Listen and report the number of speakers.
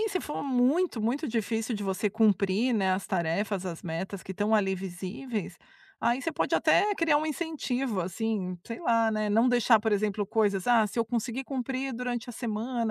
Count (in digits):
1